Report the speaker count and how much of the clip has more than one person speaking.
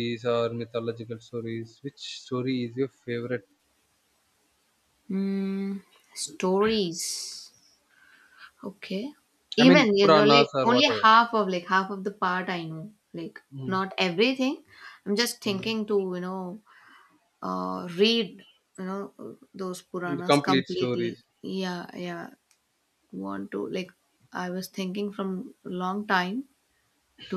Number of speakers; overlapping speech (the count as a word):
two, about 11%